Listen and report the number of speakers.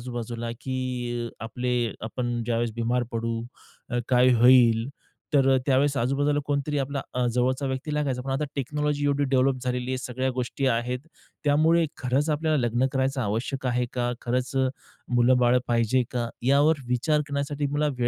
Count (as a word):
one